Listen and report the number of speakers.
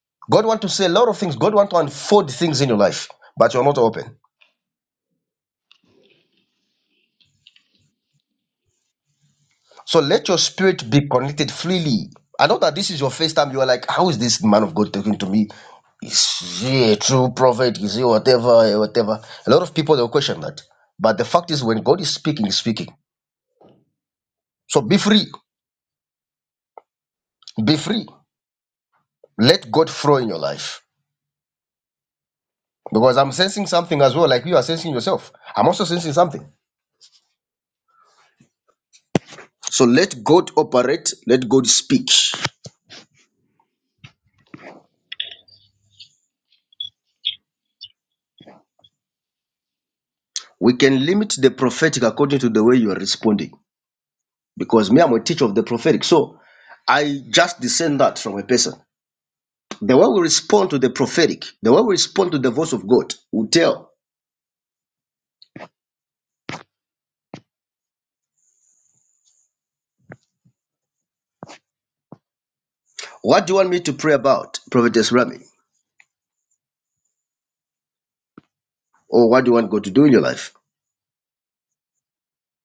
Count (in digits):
1